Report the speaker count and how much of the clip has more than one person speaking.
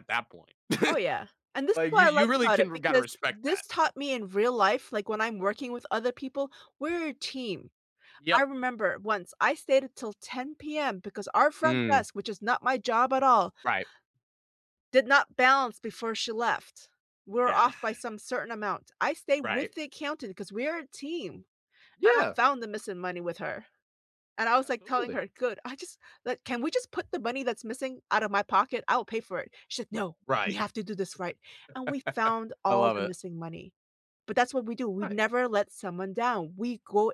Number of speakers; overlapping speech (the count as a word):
two, about 10%